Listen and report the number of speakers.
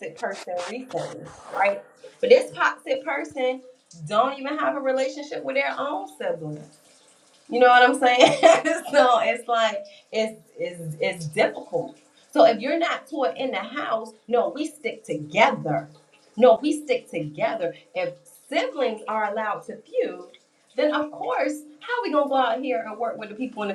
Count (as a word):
one